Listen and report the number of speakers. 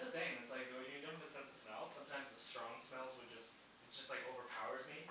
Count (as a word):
one